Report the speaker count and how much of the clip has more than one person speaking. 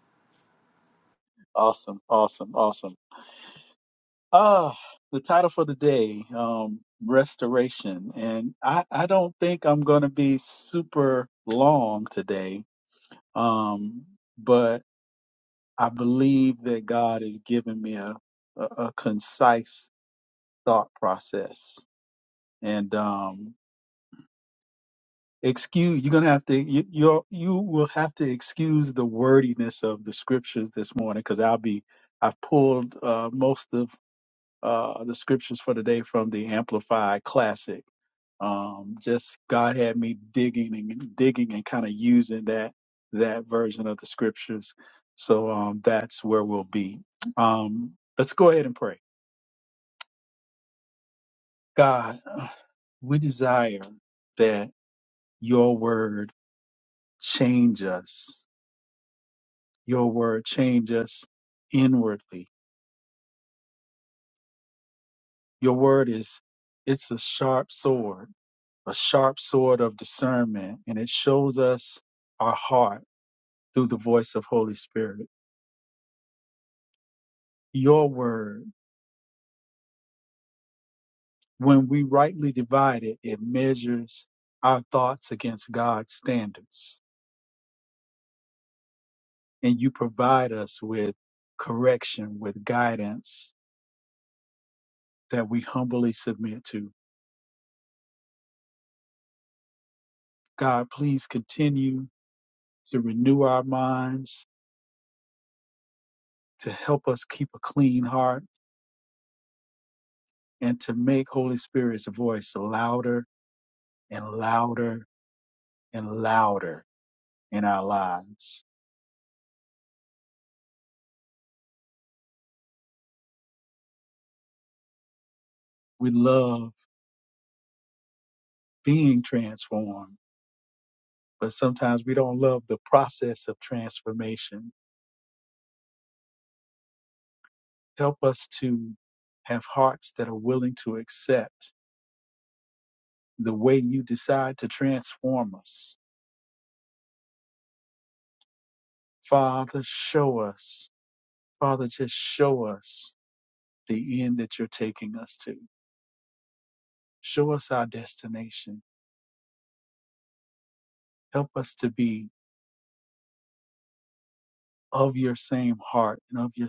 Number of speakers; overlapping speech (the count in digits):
1, no overlap